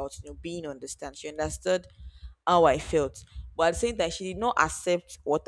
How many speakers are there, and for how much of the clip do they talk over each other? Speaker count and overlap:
1, no overlap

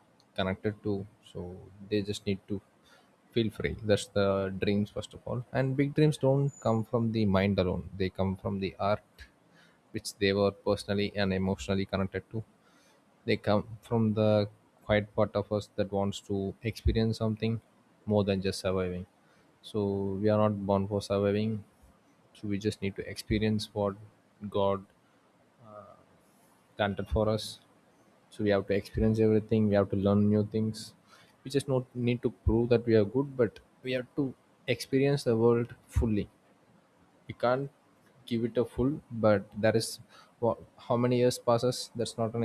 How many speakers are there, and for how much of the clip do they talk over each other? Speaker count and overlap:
1, no overlap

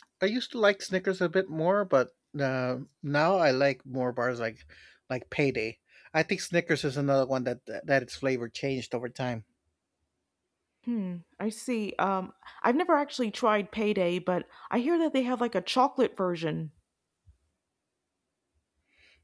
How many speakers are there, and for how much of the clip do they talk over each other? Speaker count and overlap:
2, no overlap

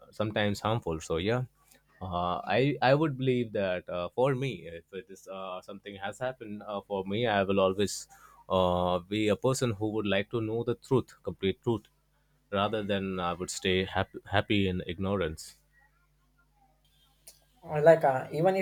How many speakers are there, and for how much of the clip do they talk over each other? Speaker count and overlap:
2, no overlap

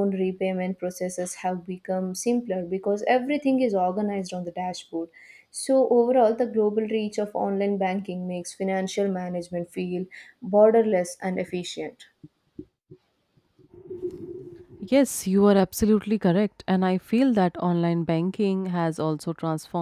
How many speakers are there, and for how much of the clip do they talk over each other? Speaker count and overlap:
2, no overlap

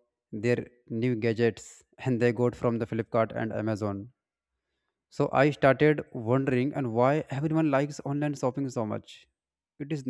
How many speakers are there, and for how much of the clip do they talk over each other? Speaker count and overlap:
1, no overlap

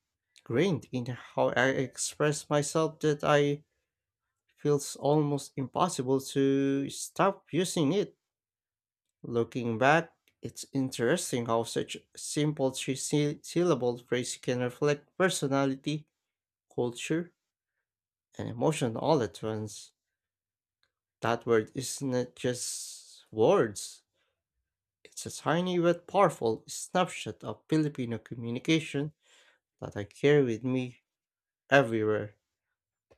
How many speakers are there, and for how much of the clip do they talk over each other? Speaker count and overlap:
1, no overlap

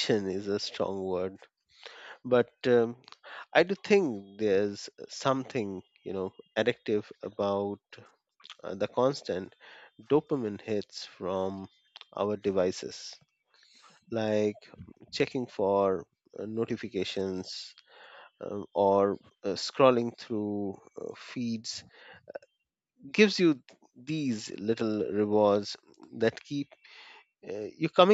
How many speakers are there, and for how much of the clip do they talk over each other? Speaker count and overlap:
1, no overlap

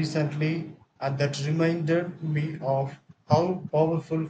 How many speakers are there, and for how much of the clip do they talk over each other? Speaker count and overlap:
1, no overlap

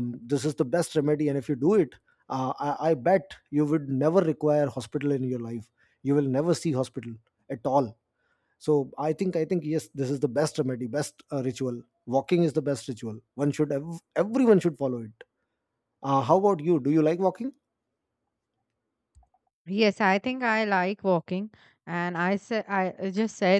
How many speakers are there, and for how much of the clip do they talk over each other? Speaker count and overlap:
2, no overlap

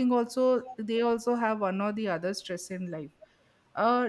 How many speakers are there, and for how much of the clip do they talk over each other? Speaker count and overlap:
1, no overlap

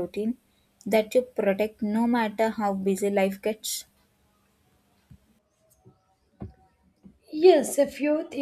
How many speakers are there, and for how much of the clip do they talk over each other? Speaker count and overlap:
2, no overlap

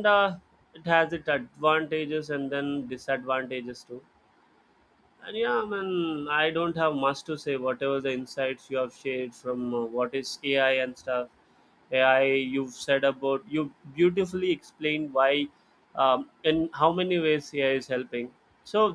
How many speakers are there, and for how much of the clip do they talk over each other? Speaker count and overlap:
1, no overlap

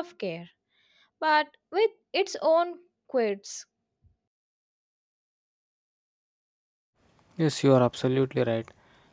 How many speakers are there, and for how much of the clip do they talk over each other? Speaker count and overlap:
2, no overlap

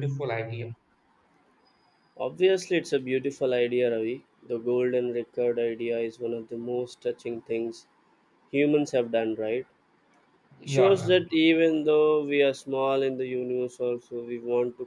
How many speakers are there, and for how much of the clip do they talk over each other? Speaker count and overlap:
2, about 3%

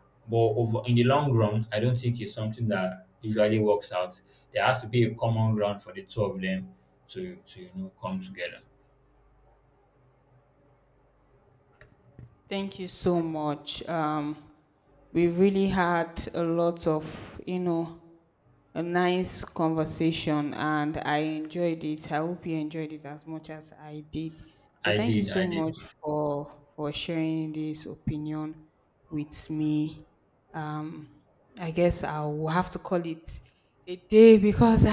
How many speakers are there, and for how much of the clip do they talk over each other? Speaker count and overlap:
2, about 2%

